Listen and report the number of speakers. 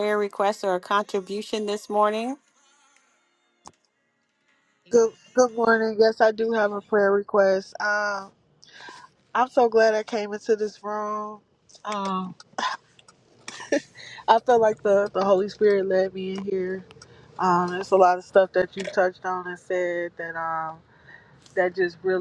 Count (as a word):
two